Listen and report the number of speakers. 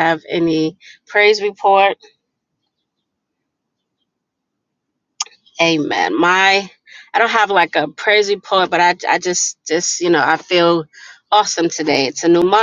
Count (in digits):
1